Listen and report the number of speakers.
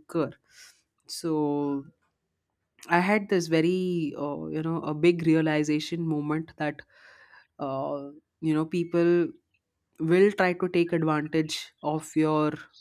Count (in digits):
1